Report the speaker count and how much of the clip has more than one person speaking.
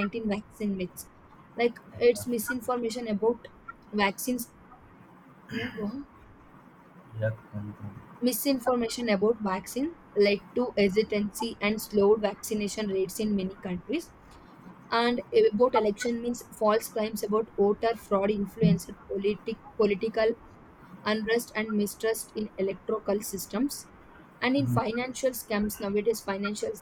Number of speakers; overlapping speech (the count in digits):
2, about 4%